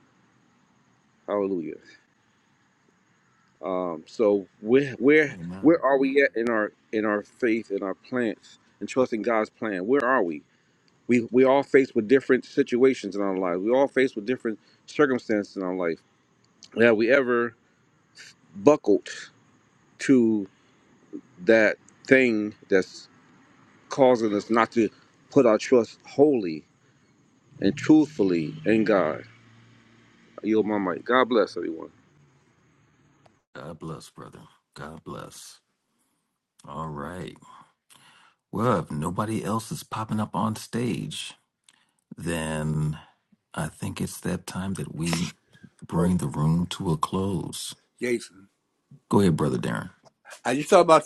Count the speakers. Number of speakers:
3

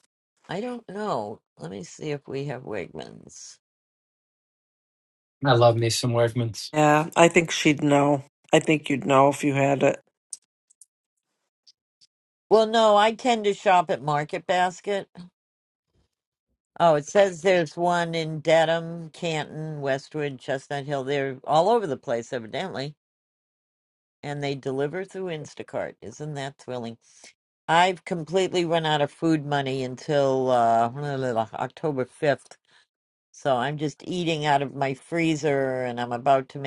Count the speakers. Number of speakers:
3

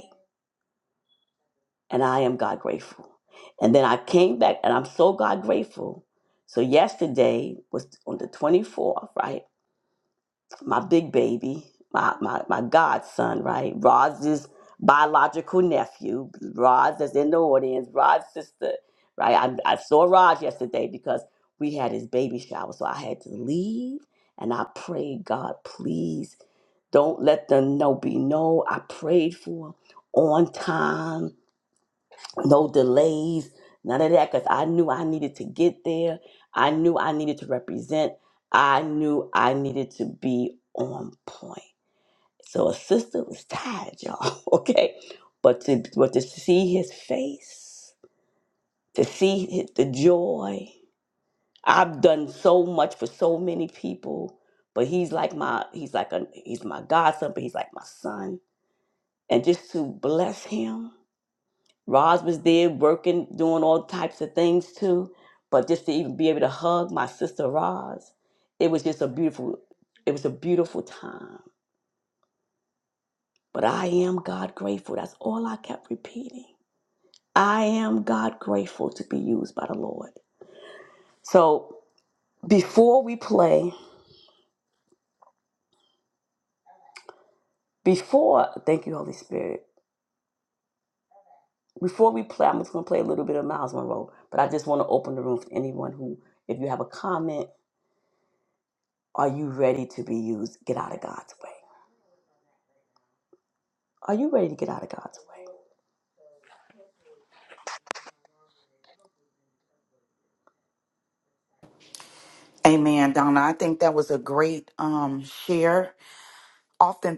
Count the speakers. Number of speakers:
2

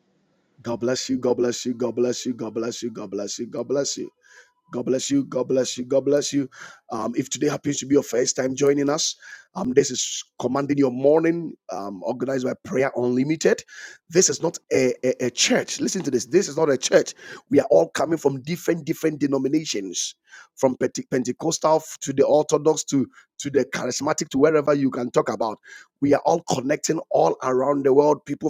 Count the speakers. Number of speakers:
1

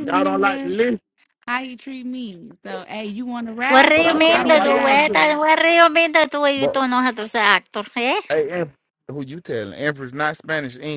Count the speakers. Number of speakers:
3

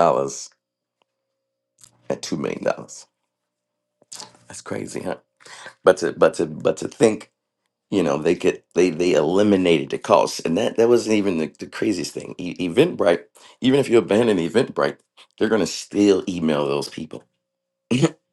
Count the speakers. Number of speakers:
1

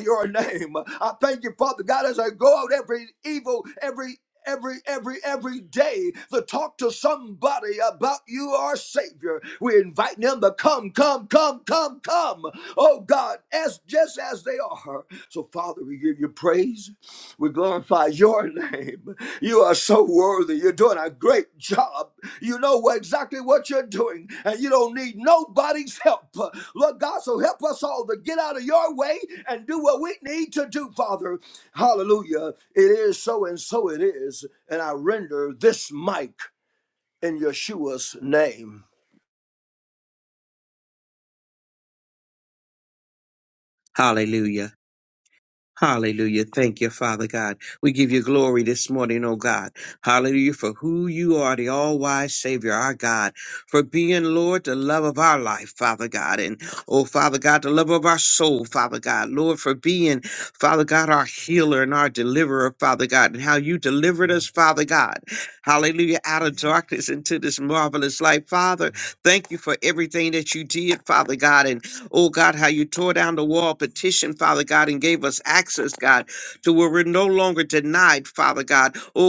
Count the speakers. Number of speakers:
2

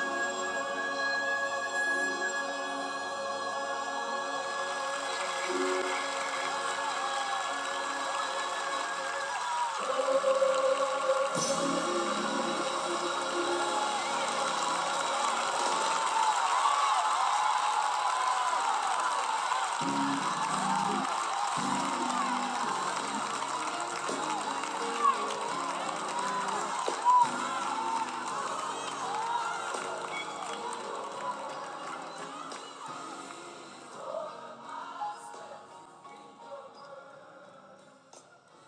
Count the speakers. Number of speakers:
0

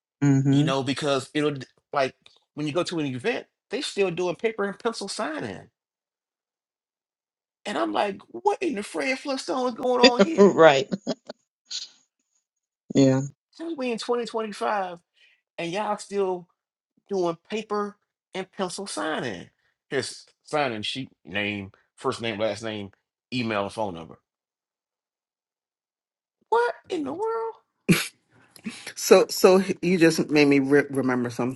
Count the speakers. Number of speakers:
3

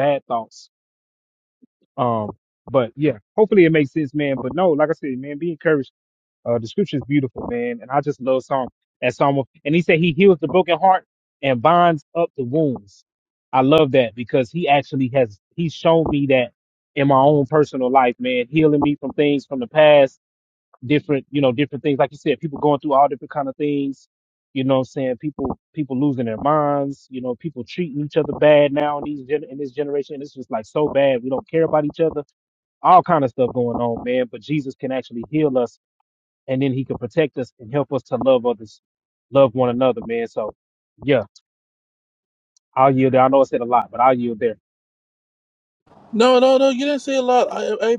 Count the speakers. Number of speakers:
2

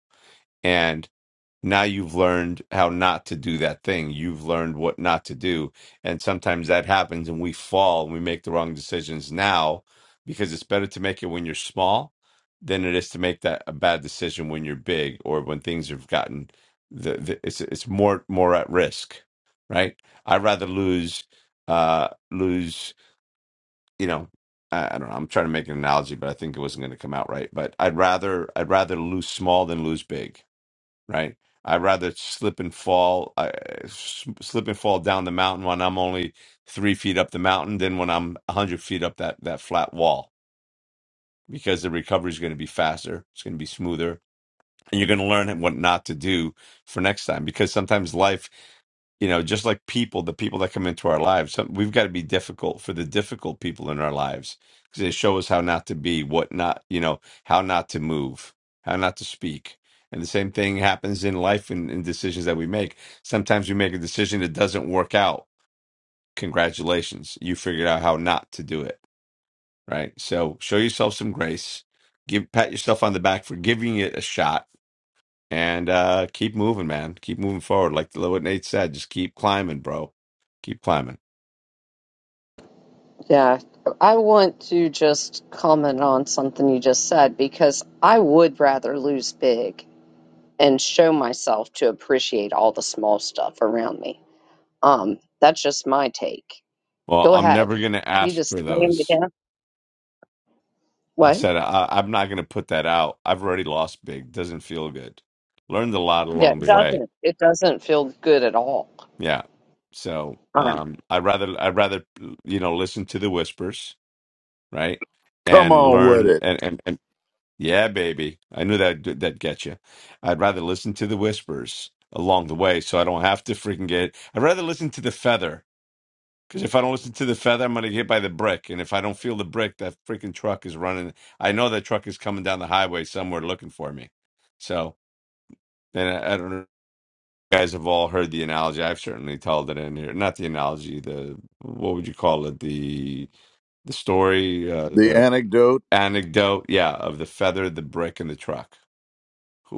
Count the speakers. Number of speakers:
3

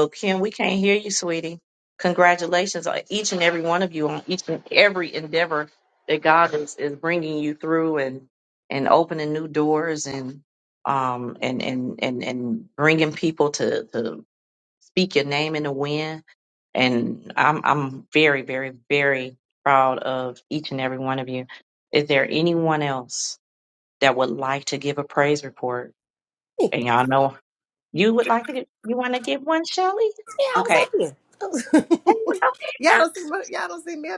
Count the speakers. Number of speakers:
2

